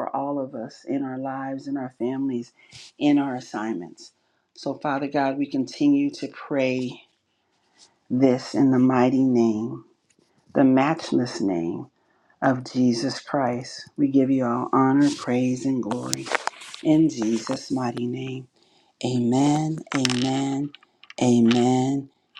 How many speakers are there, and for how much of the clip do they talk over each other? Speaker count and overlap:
1, no overlap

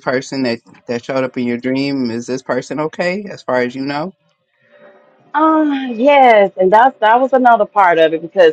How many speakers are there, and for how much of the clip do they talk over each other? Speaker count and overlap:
2, no overlap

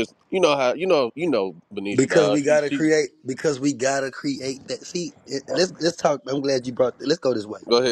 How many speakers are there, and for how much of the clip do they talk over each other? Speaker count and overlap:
2, about 11%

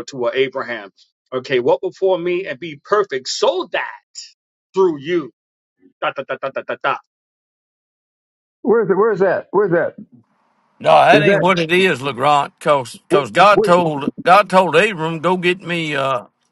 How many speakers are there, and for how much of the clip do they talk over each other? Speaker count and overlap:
3, about 6%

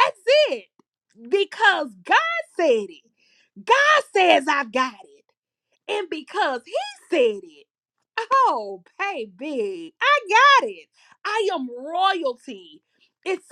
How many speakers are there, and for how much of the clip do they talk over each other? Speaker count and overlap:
1, no overlap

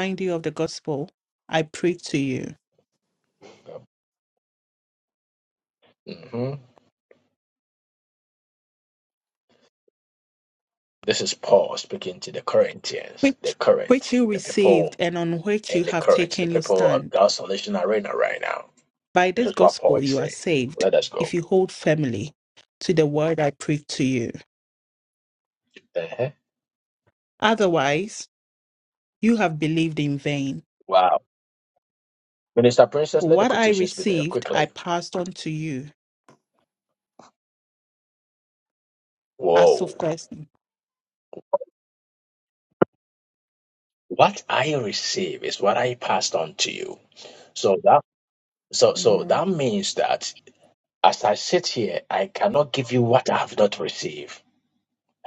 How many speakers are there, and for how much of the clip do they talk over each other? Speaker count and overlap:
2, about 11%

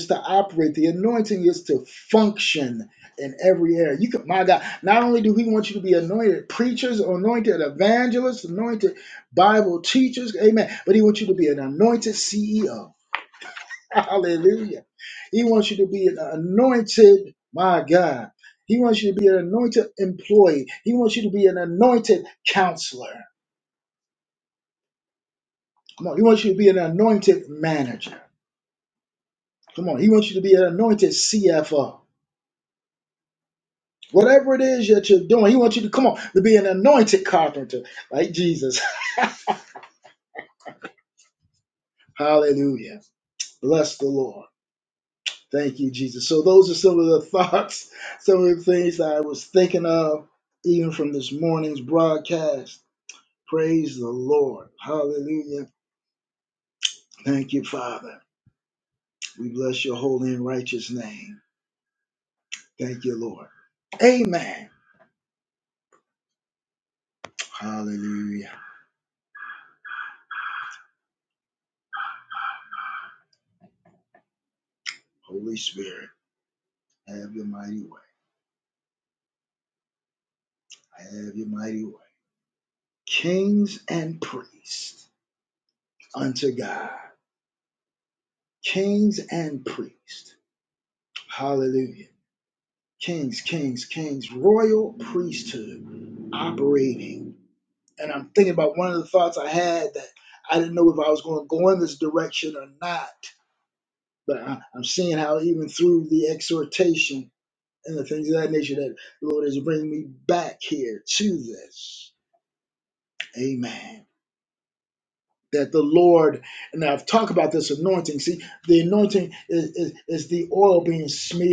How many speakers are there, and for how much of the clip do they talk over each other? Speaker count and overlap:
1, no overlap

